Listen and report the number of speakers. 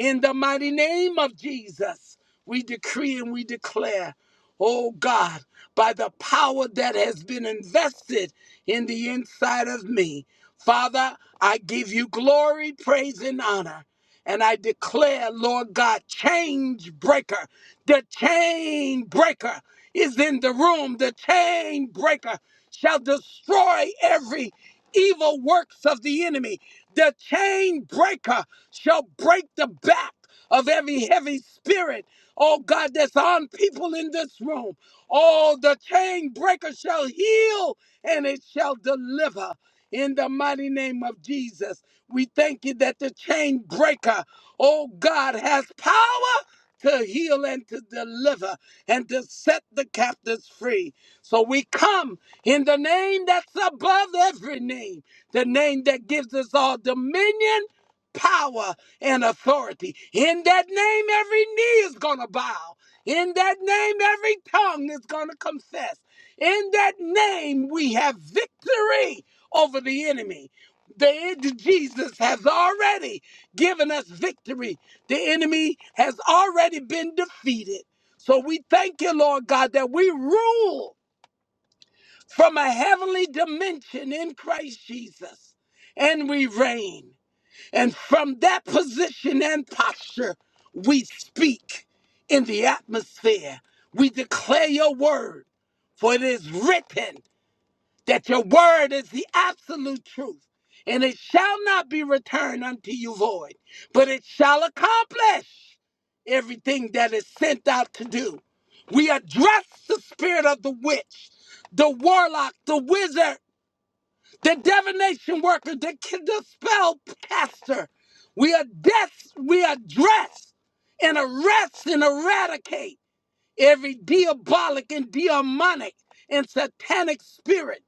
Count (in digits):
1